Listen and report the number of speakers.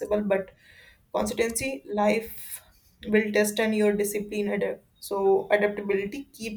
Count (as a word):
one